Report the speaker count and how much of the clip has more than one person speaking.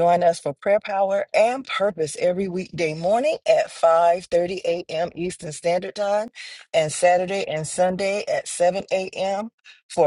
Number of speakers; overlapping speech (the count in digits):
1, no overlap